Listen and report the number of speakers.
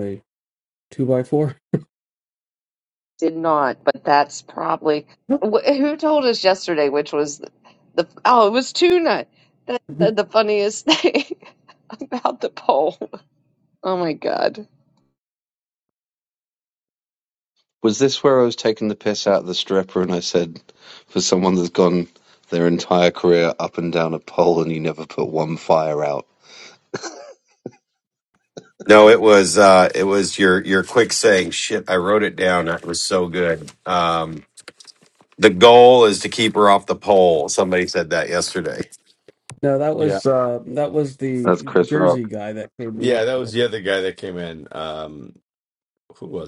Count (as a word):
five